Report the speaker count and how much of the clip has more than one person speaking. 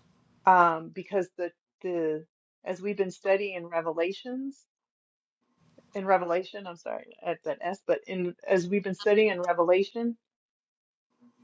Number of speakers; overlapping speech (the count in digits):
1, no overlap